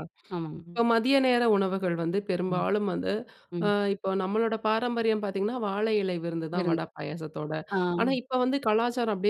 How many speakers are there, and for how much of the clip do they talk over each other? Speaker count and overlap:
2, about 5%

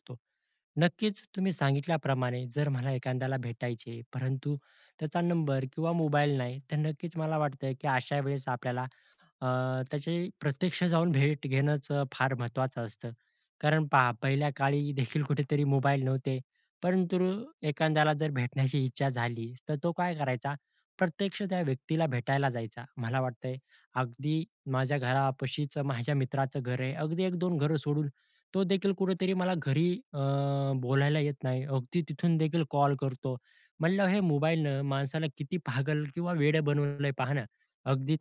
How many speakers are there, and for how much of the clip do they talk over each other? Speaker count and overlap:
1, no overlap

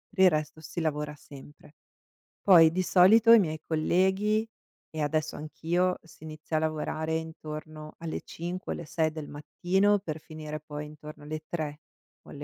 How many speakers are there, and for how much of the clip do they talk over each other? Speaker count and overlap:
1, no overlap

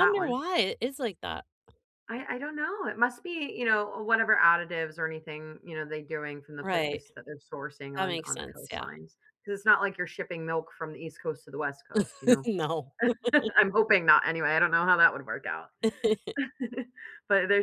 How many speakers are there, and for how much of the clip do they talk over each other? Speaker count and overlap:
2, about 9%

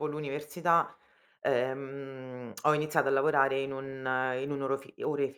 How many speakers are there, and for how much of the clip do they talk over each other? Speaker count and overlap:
1, no overlap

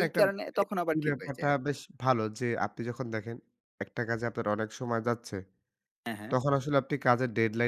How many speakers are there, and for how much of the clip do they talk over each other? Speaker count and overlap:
2, about 16%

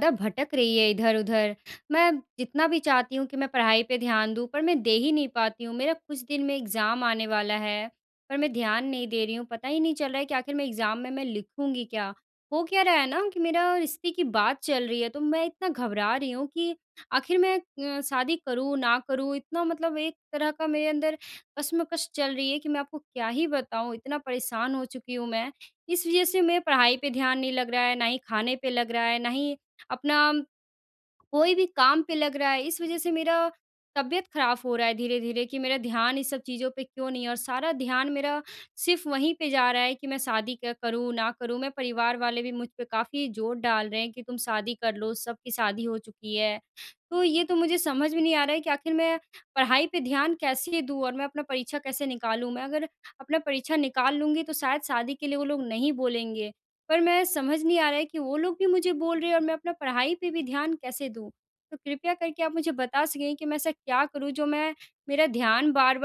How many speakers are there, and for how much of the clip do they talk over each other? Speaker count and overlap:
1, no overlap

